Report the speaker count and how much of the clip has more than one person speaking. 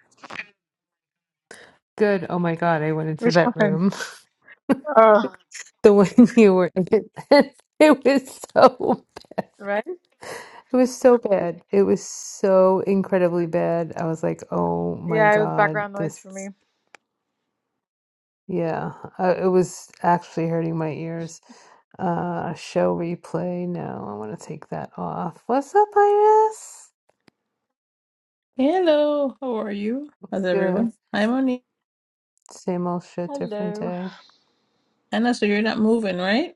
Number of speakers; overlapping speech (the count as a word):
three, about 7%